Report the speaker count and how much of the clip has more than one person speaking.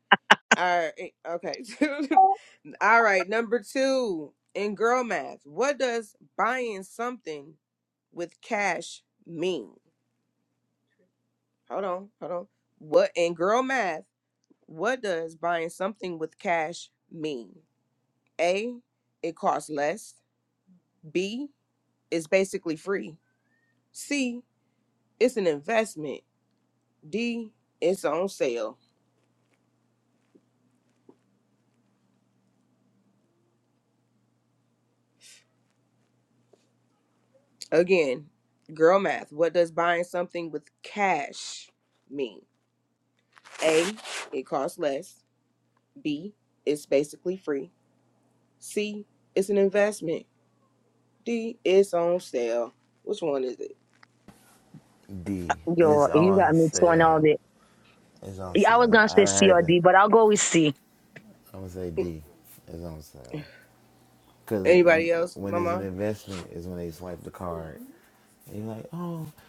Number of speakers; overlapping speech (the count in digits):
3, about 6%